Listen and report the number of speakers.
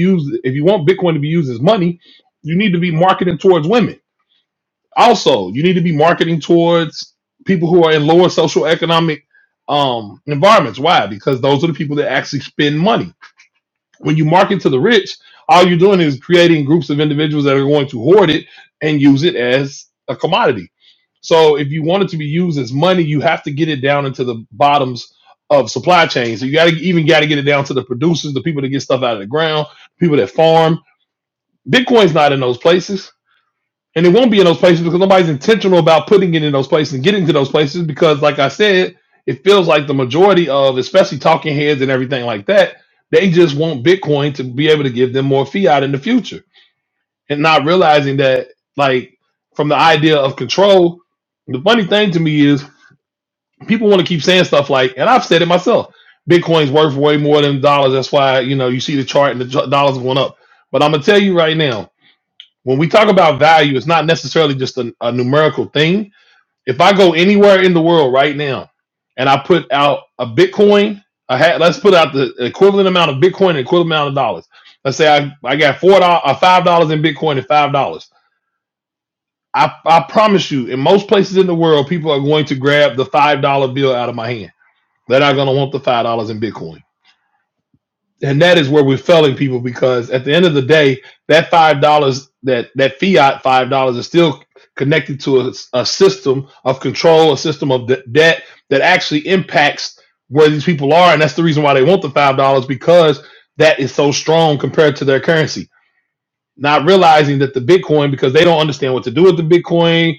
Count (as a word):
one